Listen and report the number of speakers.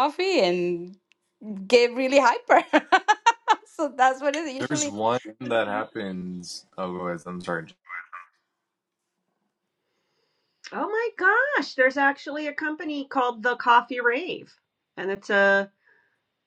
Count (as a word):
three